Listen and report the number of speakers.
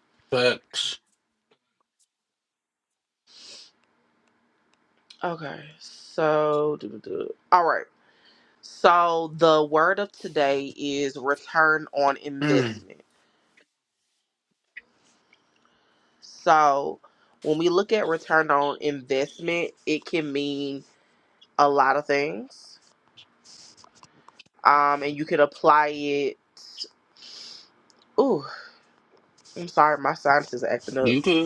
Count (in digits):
2